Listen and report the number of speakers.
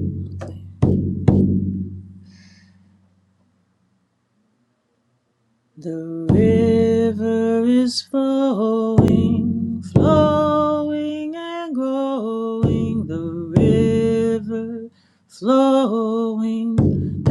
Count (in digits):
1